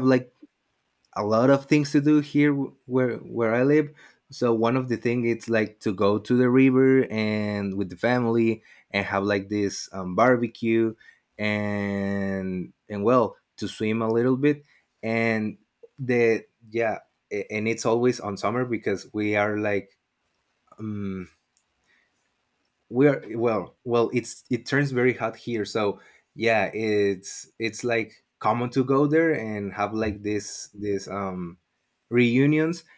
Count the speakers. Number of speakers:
1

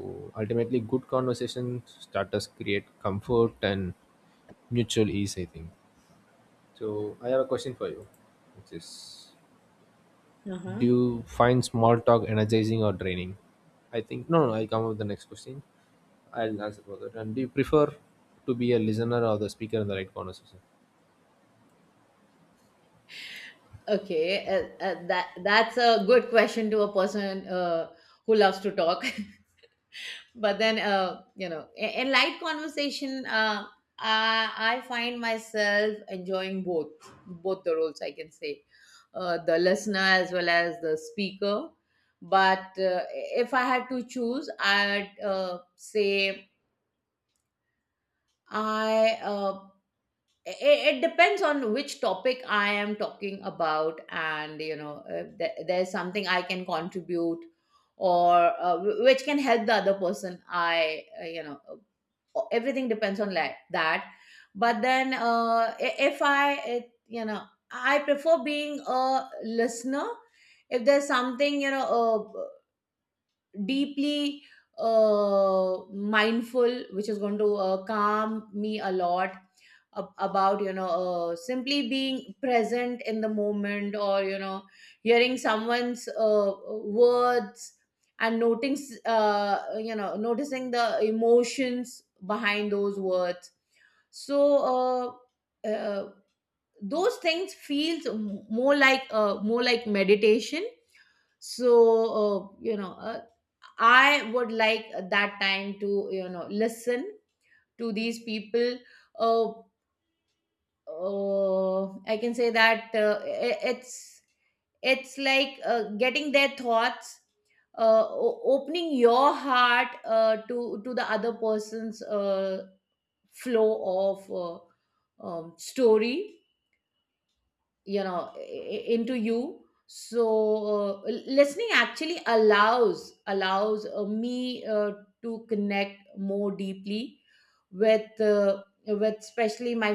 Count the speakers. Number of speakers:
2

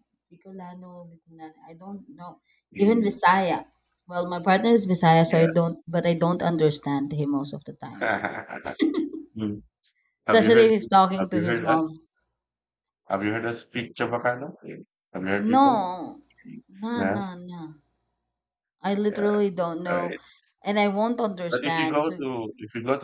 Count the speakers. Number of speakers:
2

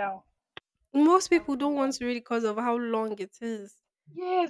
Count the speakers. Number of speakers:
2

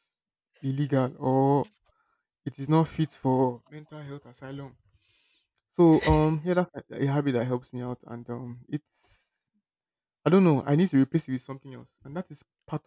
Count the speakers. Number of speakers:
1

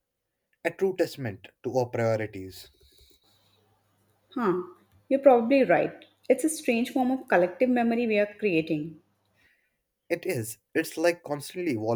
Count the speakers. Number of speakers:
2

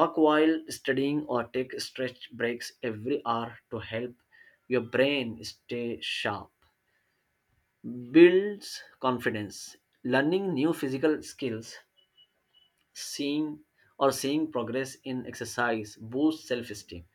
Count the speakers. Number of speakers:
1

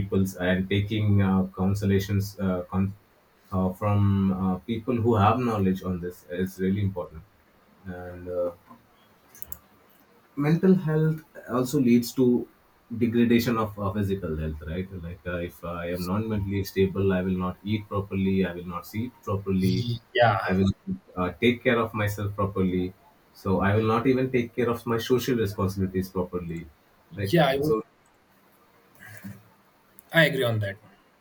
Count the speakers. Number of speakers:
2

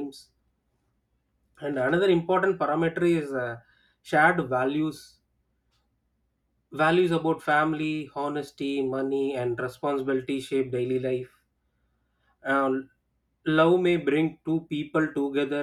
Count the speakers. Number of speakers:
1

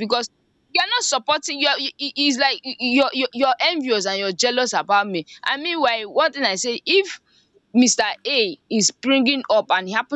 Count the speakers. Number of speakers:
1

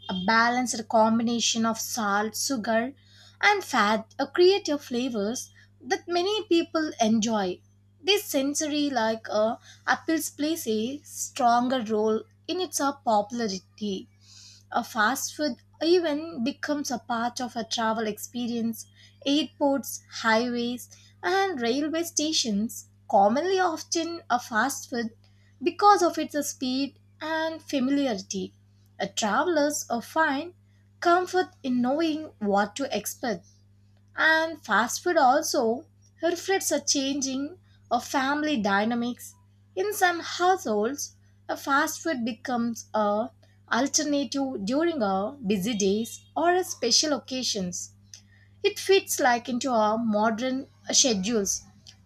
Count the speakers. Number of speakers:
1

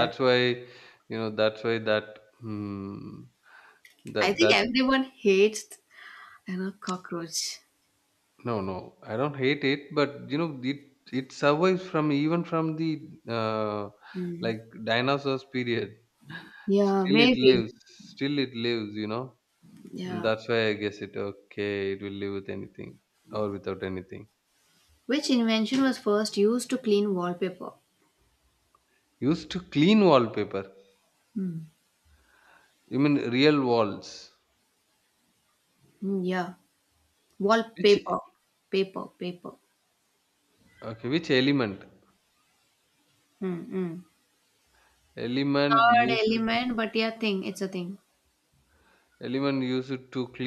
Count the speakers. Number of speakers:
2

